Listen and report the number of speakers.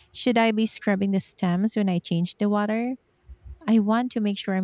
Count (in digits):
1